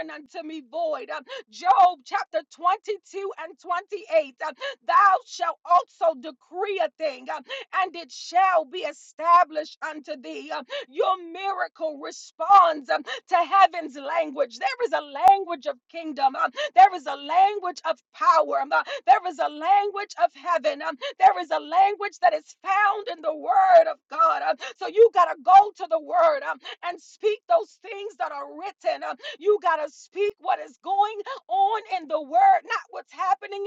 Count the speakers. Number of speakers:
one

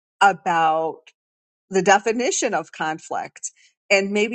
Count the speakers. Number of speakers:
one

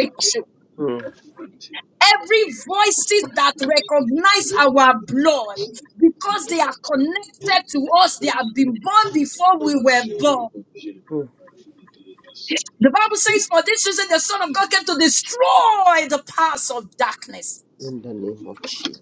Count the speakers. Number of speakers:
two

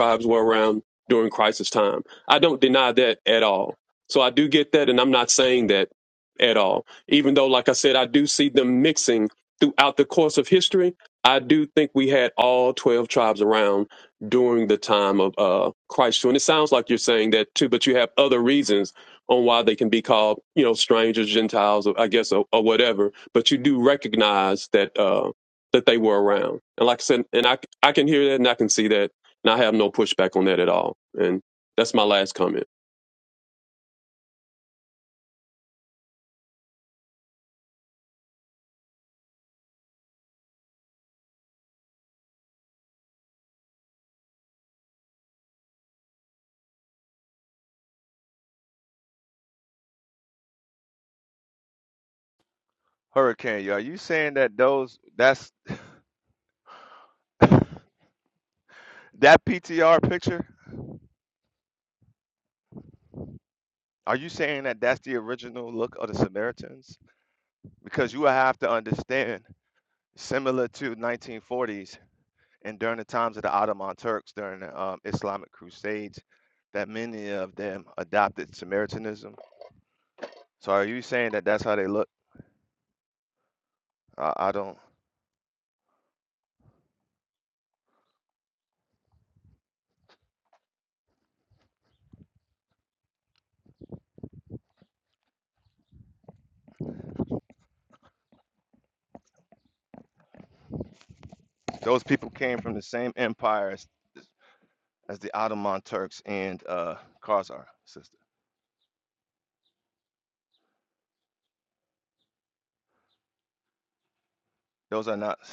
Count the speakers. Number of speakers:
two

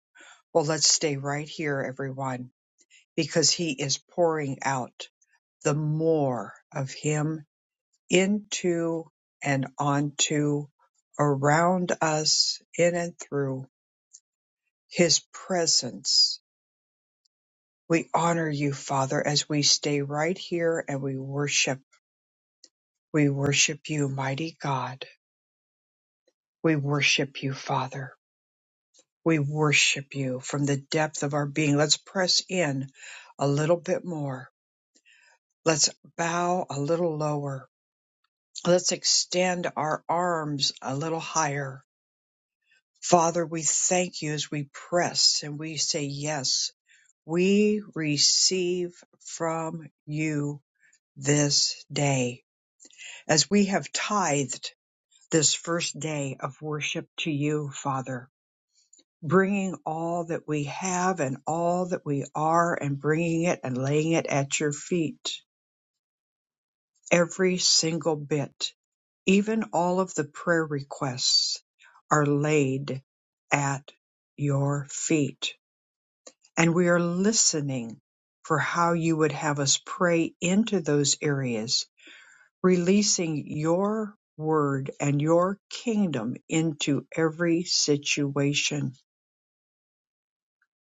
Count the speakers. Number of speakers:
one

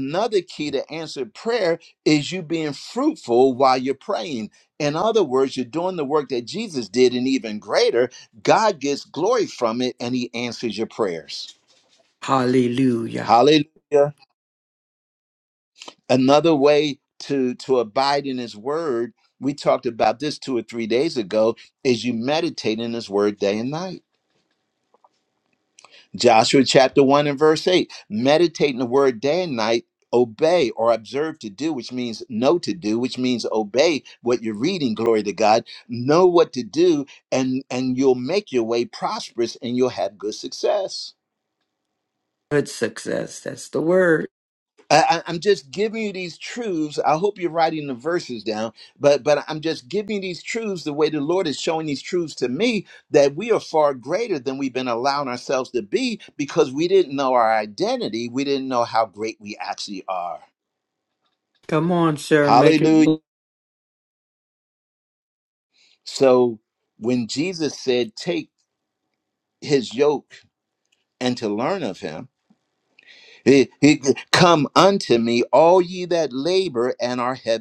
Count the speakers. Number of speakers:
two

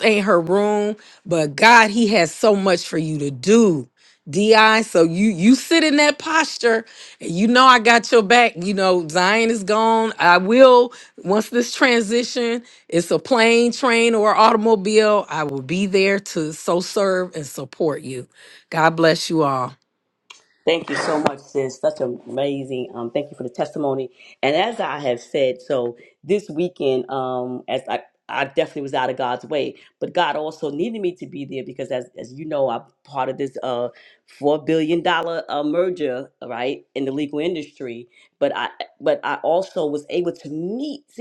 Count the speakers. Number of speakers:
two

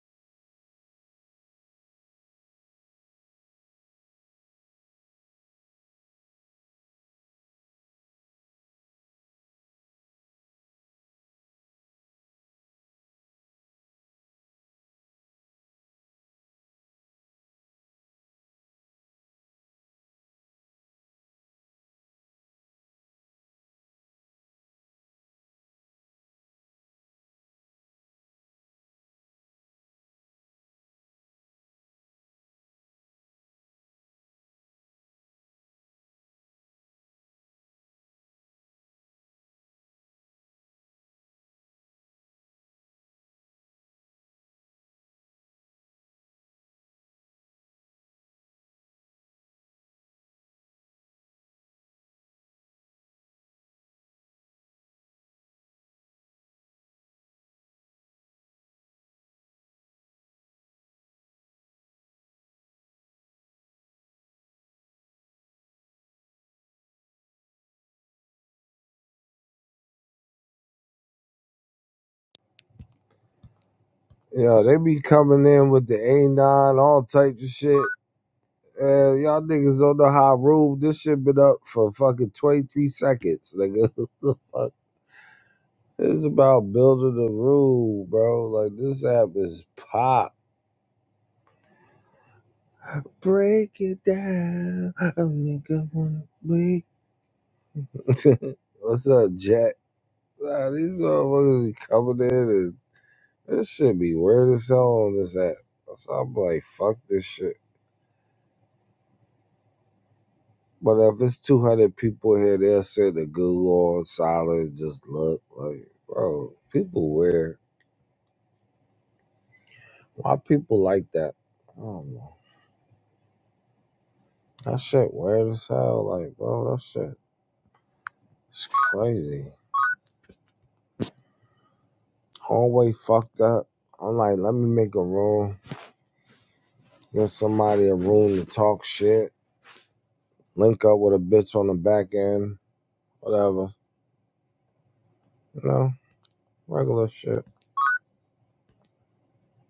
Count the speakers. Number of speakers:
one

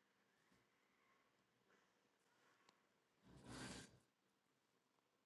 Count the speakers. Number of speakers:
zero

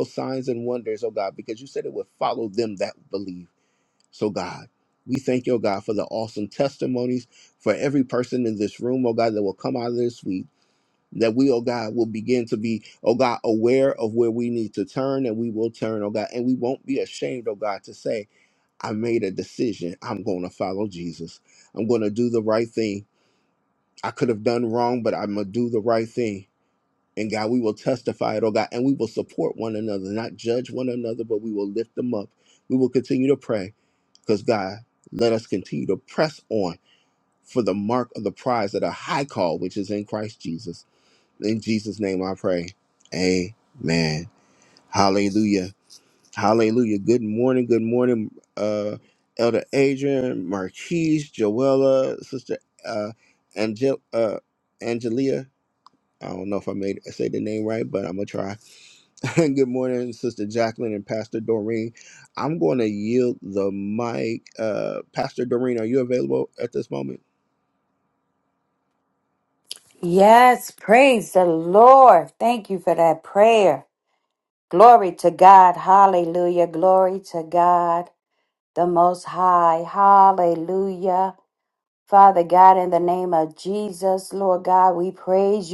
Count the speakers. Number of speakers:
two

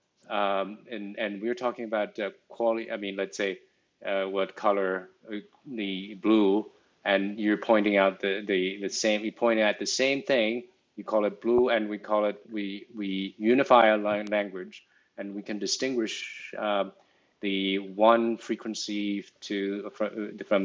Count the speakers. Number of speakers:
one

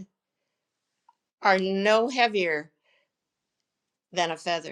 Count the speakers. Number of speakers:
one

